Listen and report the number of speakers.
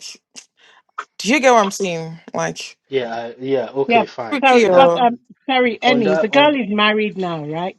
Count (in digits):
3